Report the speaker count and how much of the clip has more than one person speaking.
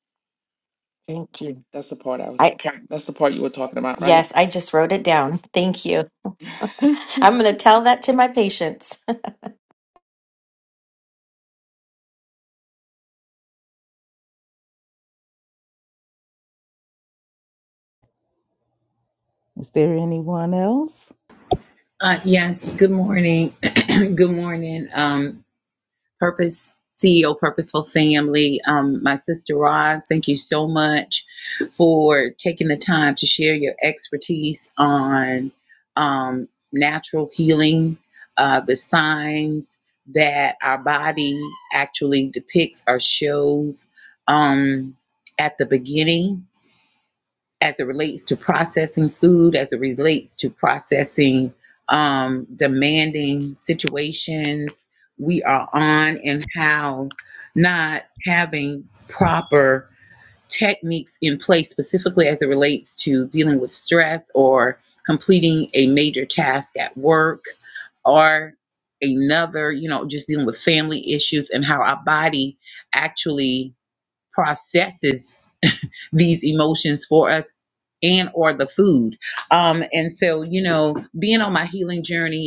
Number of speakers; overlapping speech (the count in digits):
4, under 1%